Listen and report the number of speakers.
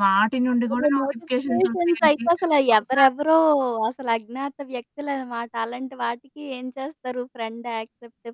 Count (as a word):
two